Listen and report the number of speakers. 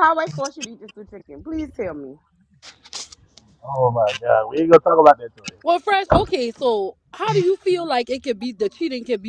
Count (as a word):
three